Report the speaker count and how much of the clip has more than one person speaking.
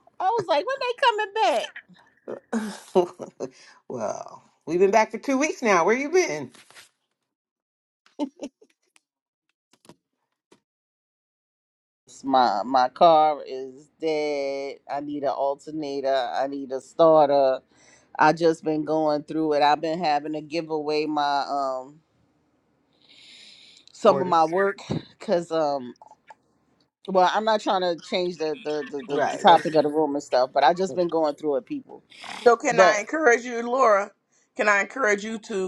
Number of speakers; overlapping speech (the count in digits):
3, about 3%